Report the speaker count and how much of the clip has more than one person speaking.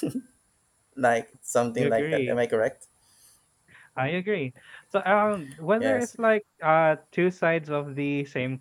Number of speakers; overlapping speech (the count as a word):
two, about 10%